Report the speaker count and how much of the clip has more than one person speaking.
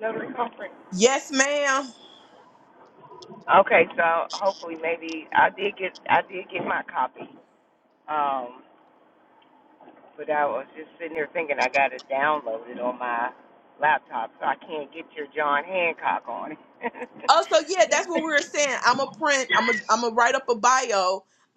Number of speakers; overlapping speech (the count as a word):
two, no overlap